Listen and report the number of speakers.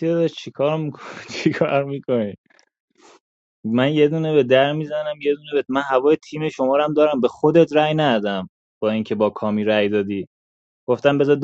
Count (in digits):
1